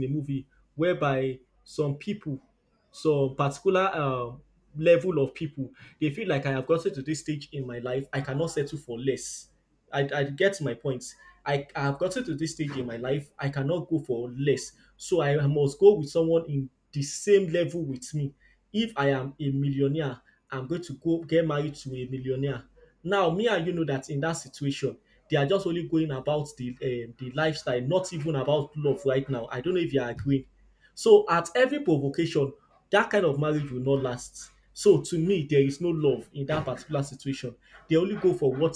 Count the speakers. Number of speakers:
1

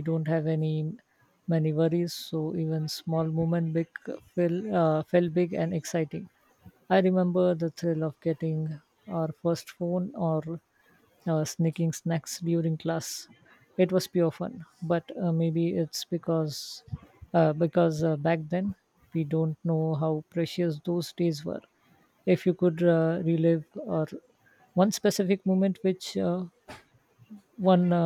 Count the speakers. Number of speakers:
1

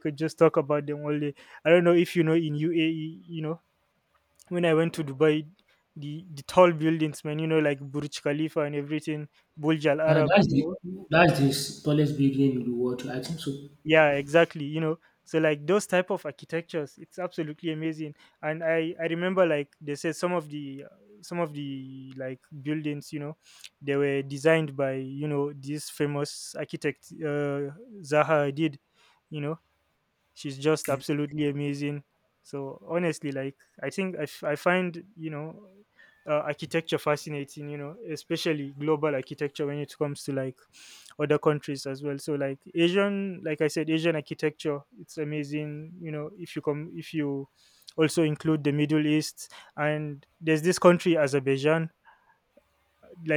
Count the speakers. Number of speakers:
2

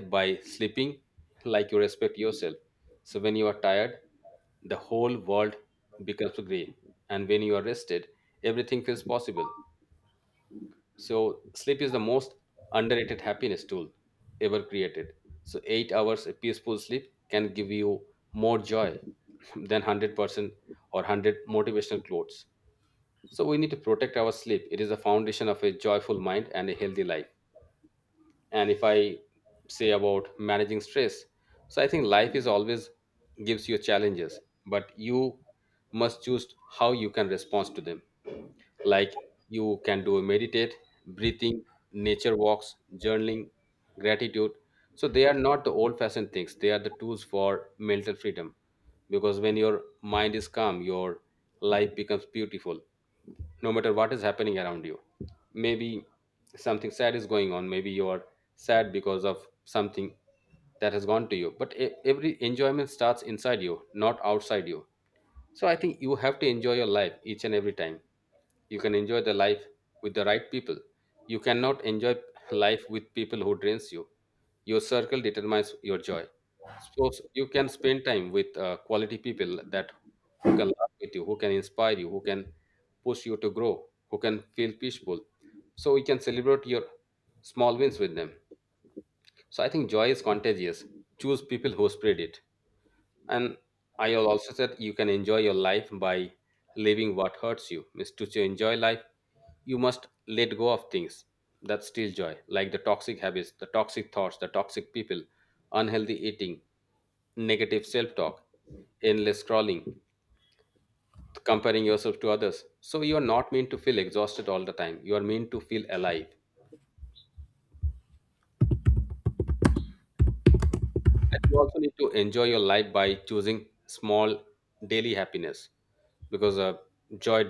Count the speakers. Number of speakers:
1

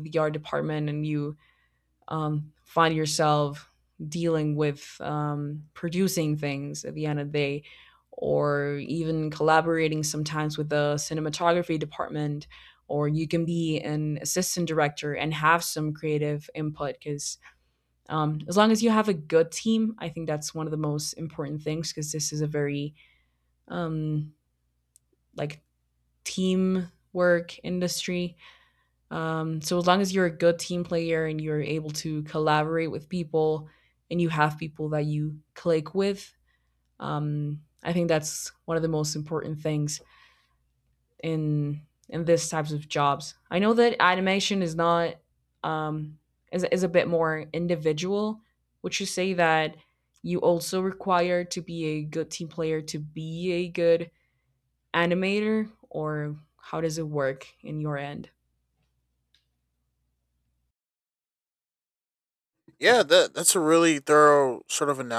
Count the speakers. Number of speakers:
2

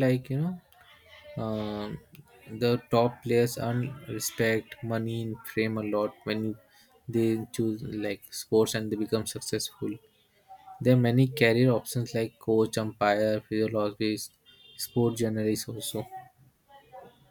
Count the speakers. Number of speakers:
1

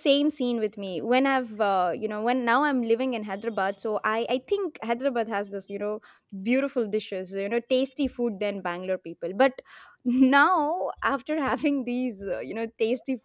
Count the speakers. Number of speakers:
1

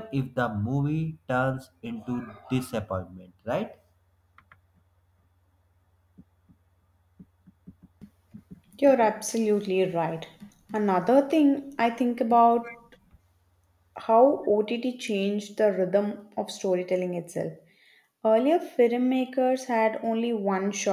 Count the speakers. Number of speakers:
2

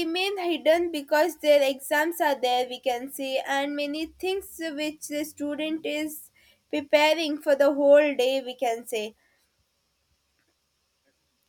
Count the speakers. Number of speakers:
1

